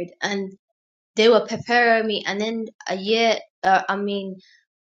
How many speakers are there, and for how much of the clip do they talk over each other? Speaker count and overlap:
1, no overlap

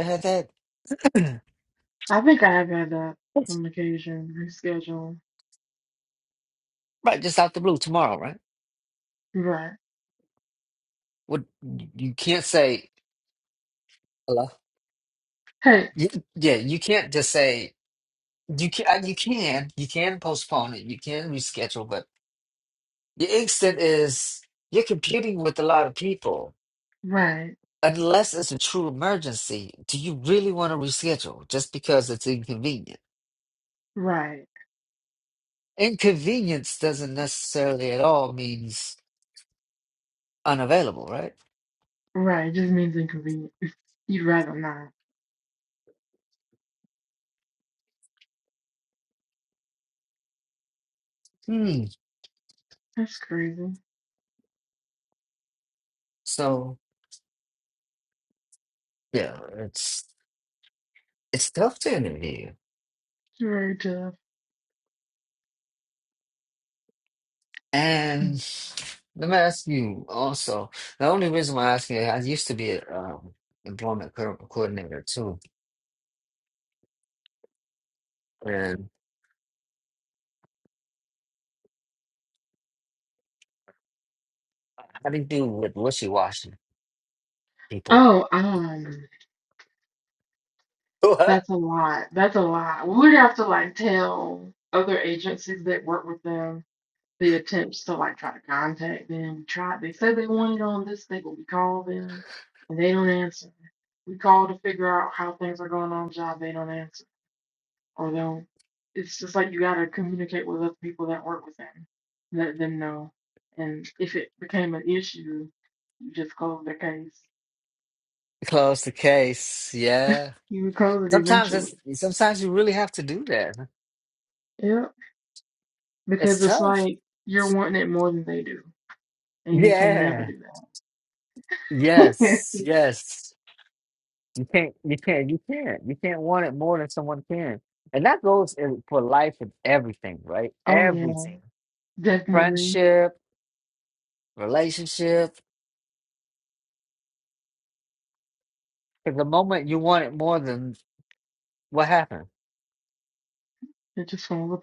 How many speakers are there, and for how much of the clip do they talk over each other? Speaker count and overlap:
2, about 2%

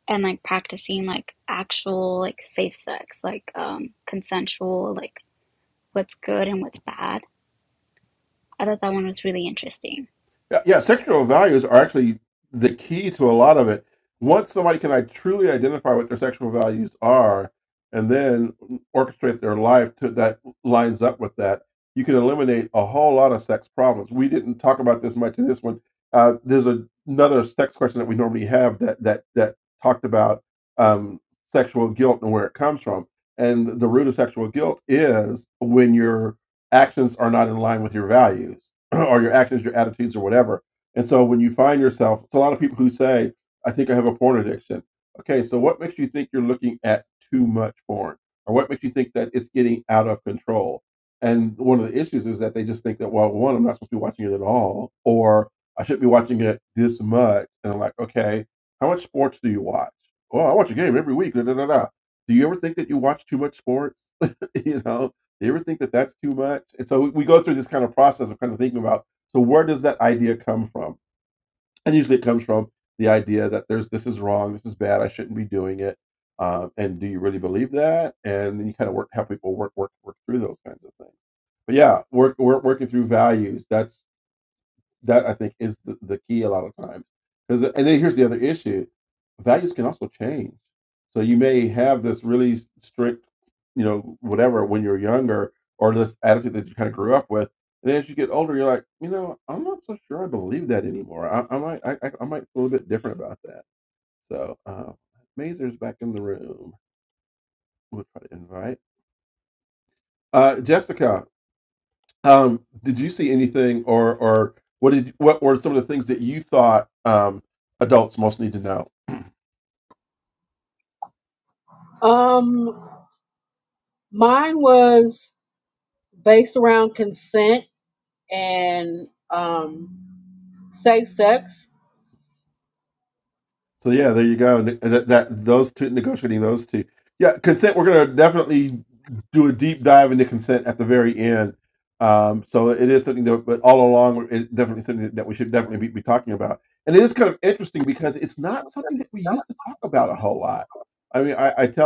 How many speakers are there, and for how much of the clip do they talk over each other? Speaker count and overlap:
3, no overlap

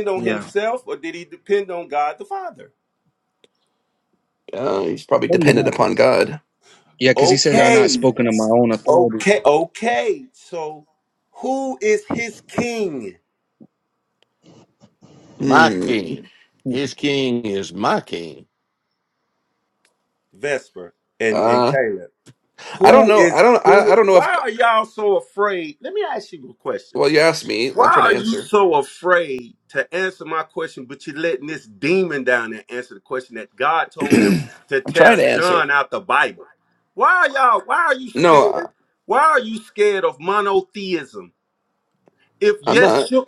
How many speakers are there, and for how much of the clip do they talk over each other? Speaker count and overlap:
4, about 17%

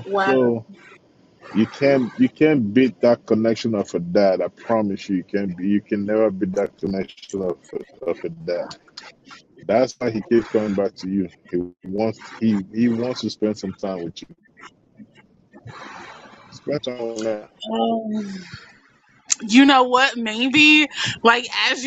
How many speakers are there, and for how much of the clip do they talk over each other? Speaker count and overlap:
2, about 1%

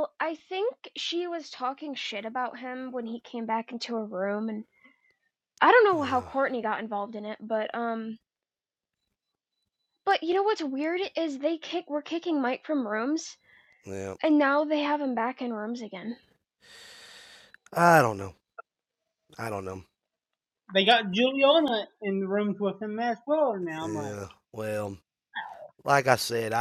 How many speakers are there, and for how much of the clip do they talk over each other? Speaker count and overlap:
3, about 2%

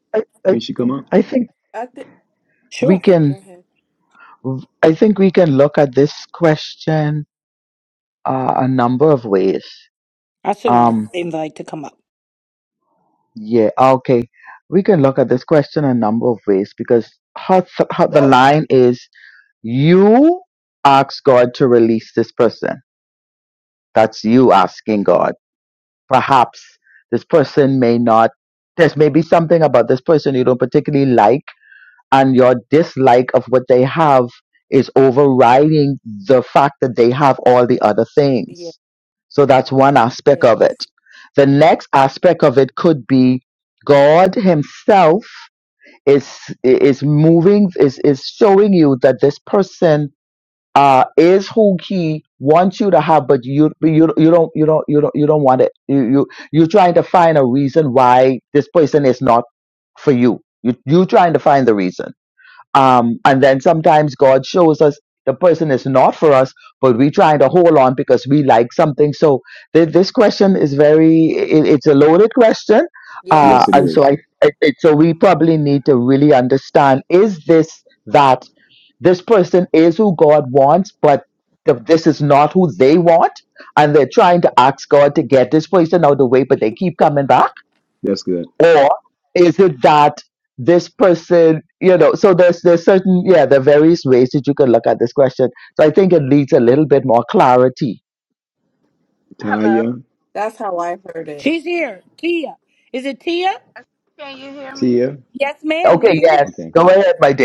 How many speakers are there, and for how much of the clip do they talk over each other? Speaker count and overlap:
5, about 3%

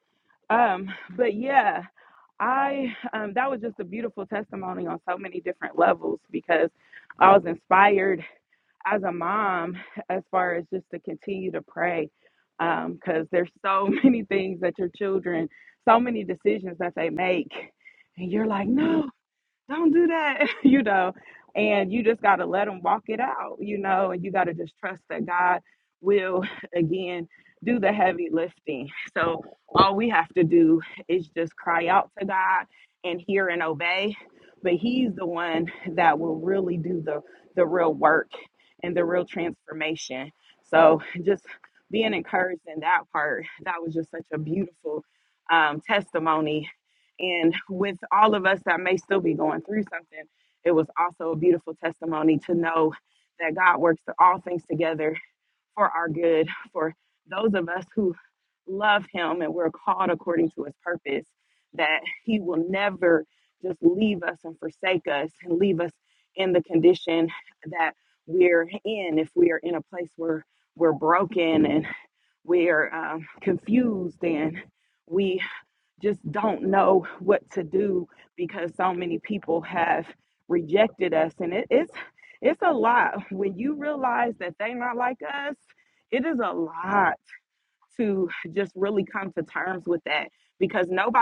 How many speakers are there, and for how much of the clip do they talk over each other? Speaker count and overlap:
1, no overlap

